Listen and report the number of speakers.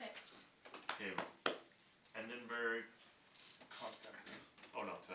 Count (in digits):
1